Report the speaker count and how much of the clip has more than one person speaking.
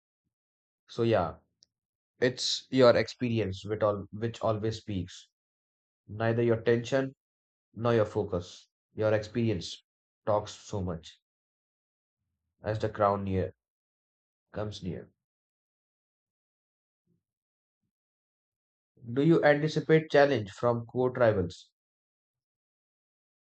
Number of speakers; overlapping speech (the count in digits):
1, no overlap